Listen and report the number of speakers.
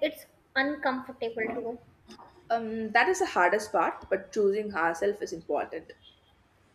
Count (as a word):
two